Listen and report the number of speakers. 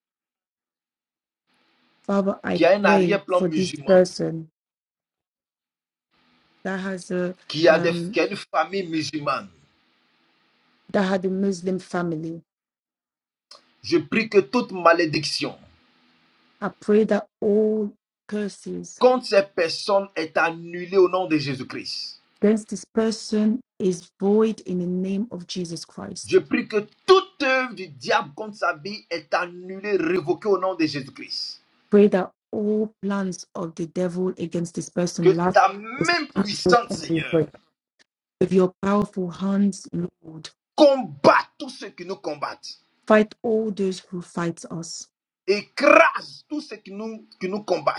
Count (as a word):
two